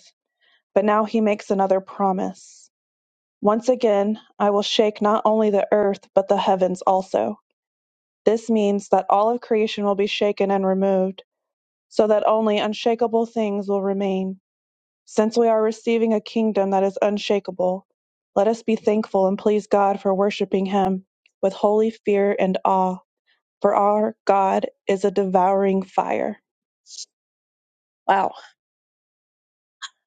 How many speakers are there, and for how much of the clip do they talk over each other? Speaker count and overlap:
one, no overlap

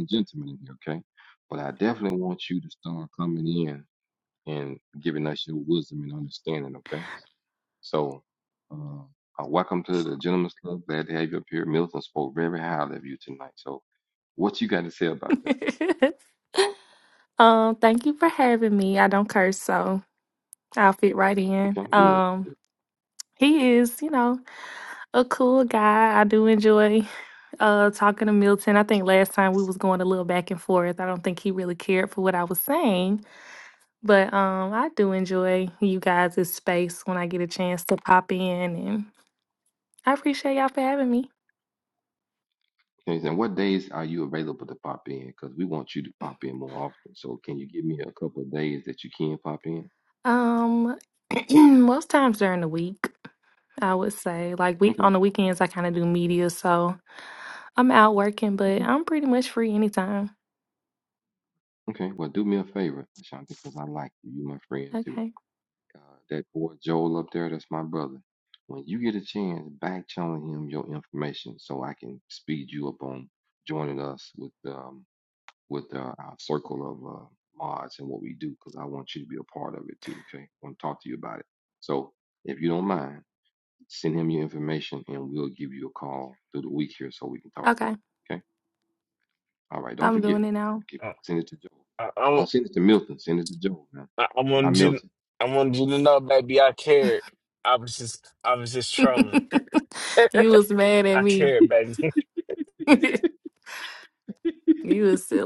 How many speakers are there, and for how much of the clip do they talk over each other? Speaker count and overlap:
three, about 3%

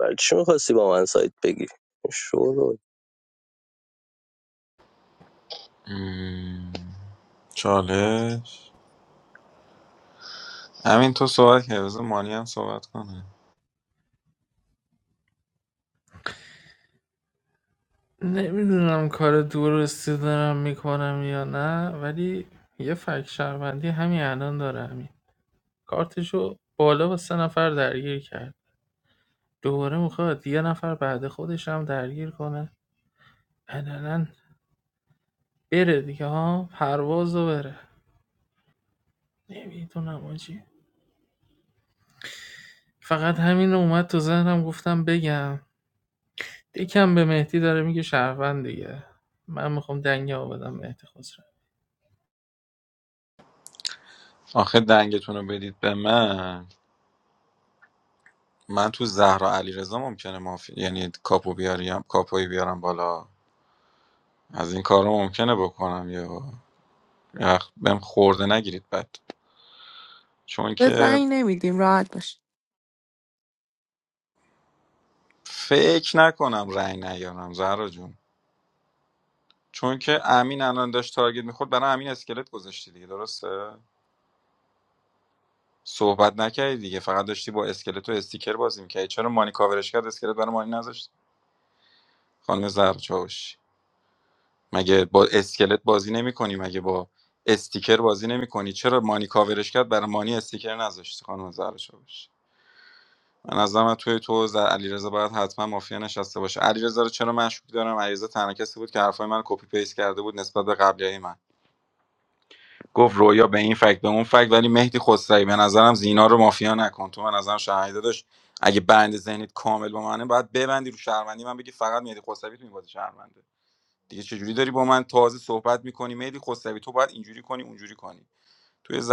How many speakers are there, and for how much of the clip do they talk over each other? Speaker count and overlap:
four, under 1%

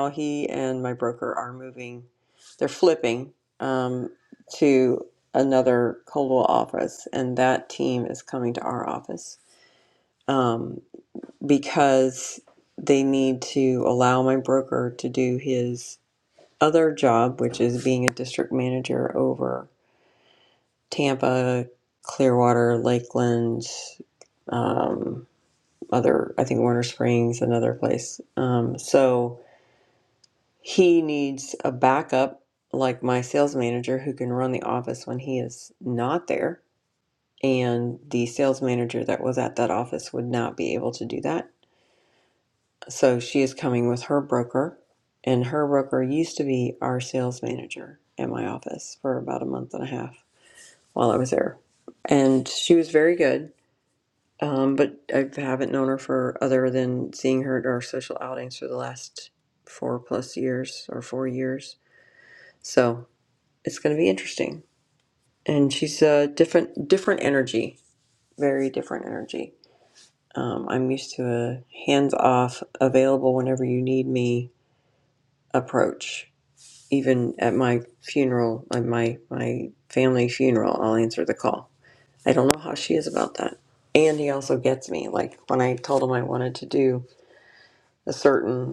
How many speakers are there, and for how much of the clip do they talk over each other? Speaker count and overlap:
one, no overlap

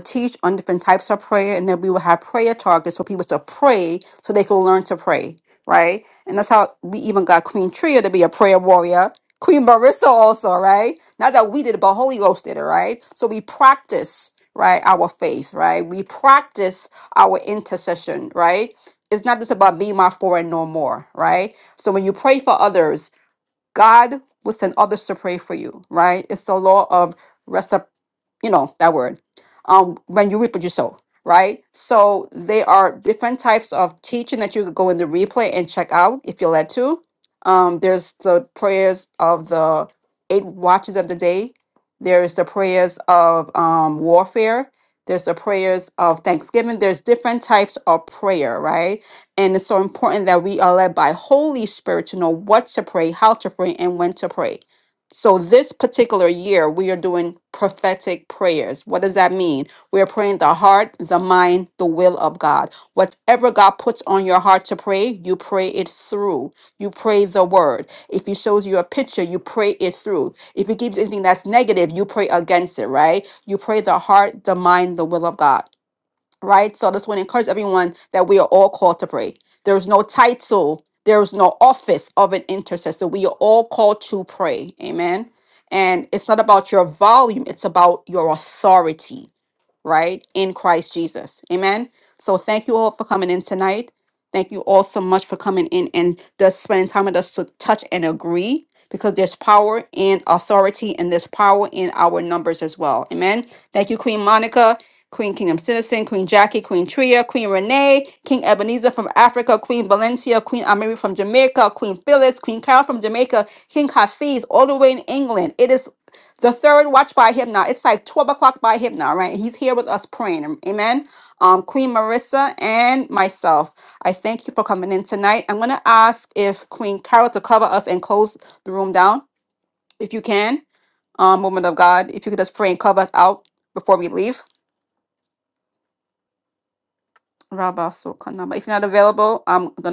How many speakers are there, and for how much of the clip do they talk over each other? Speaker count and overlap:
one, no overlap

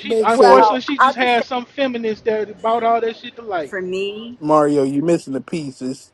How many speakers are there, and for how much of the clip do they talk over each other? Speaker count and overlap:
three, about 24%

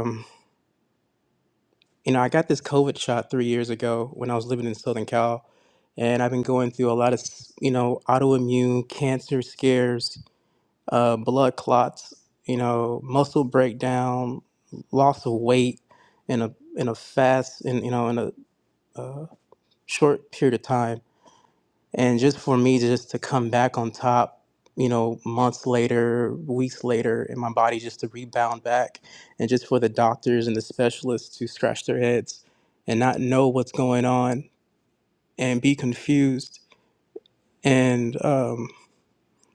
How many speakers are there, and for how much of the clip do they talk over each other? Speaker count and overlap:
one, no overlap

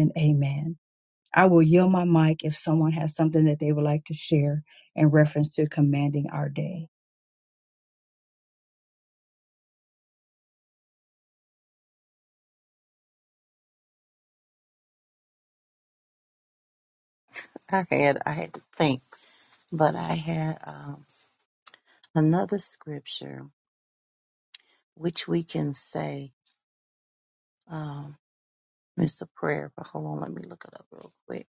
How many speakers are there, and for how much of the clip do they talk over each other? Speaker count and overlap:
two, no overlap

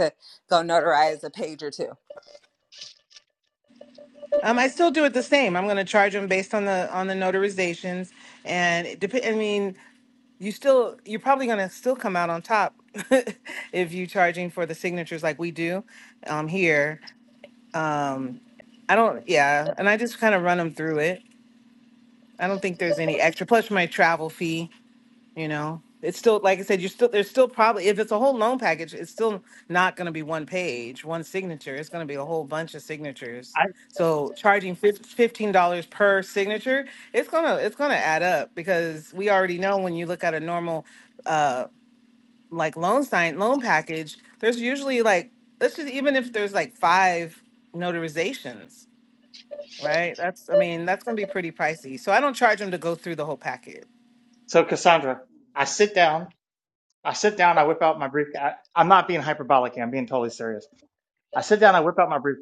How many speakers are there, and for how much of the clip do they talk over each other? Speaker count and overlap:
three, no overlap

